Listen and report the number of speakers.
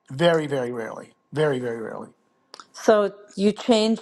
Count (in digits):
2